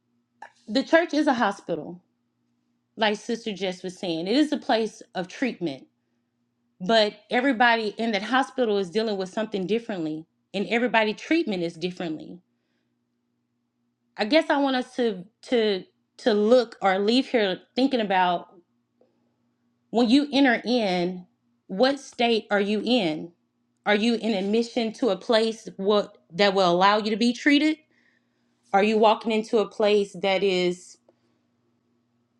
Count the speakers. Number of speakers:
1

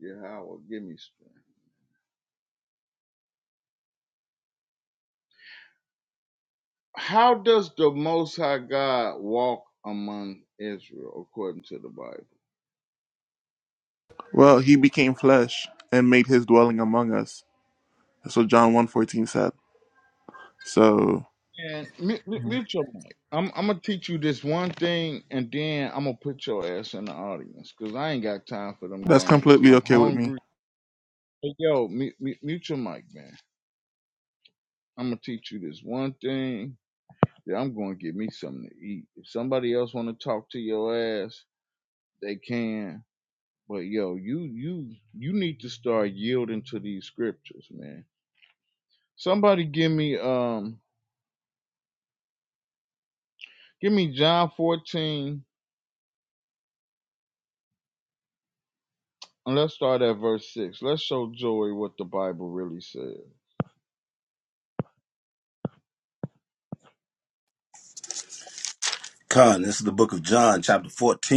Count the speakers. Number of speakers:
3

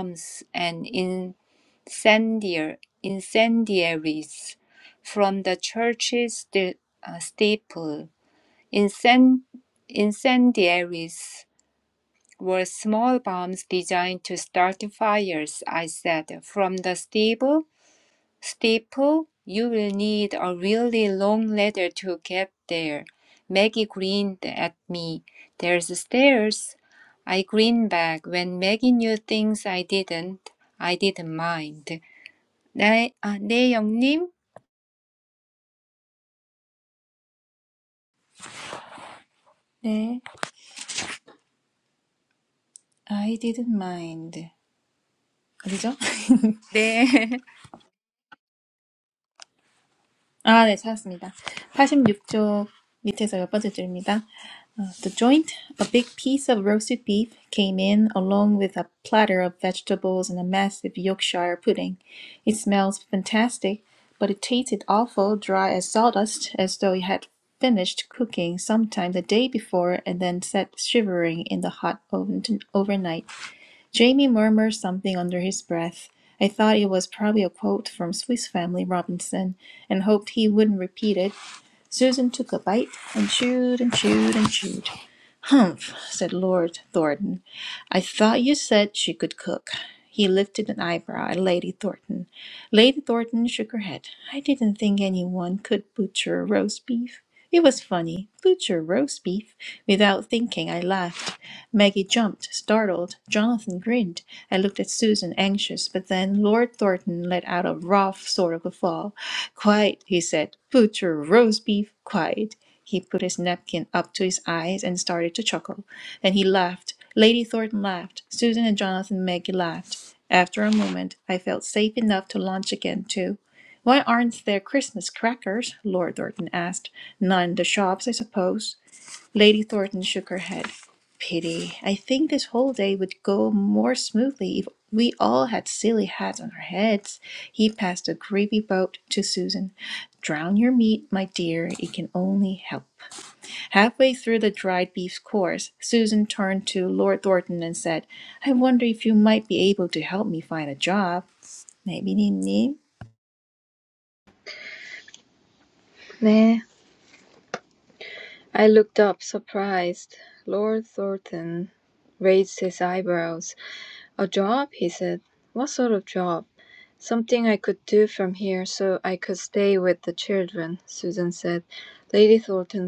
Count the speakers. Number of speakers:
3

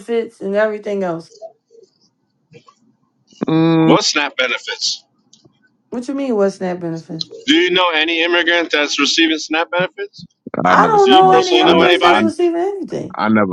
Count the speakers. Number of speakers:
3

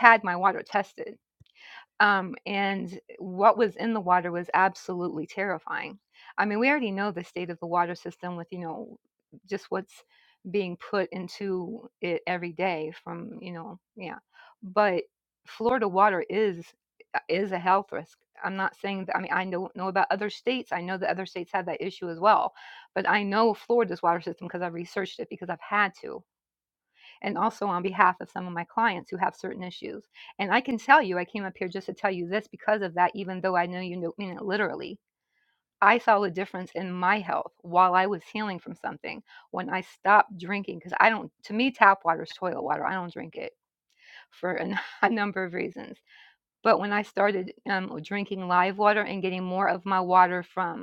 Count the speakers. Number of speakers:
1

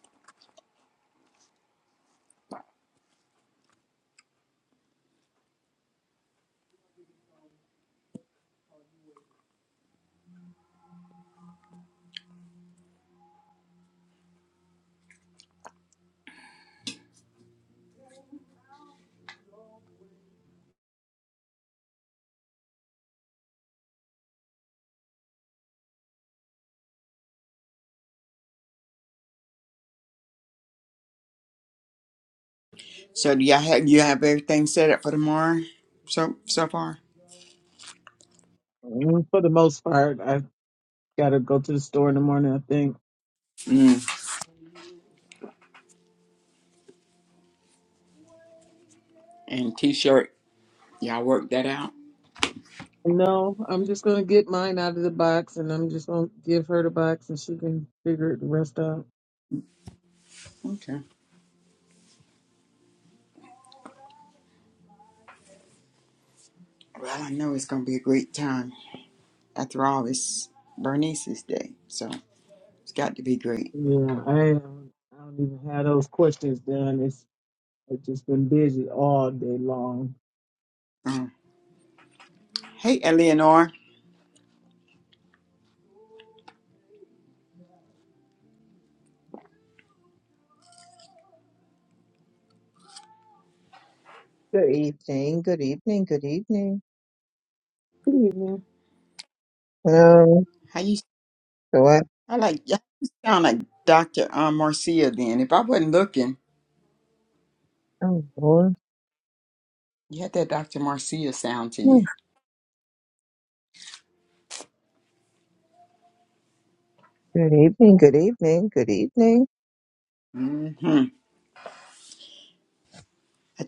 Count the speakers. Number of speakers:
3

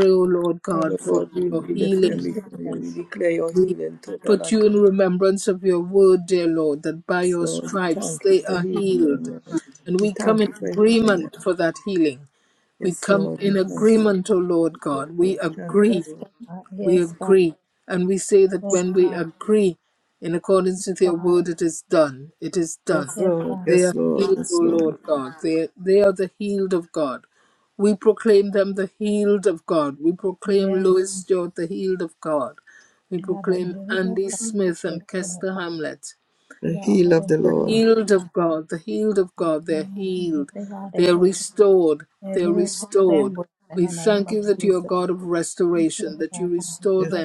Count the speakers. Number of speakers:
3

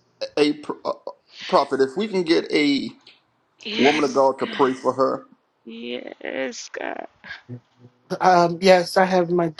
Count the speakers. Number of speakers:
3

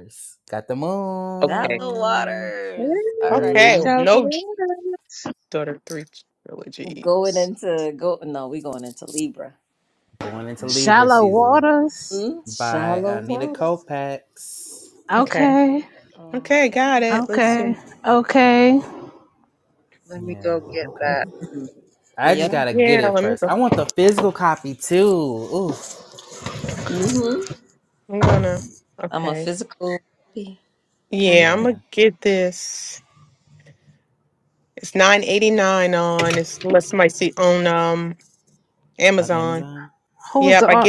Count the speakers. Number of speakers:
5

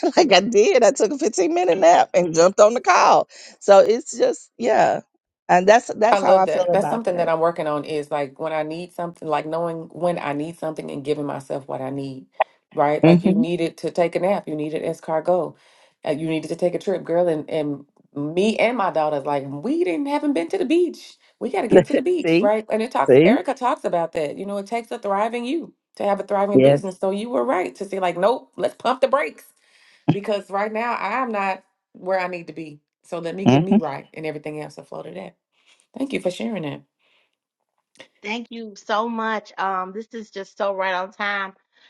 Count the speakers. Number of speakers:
3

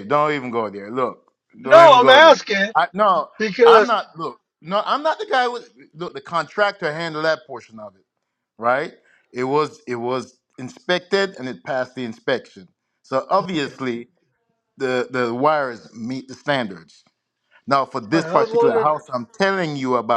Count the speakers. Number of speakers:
2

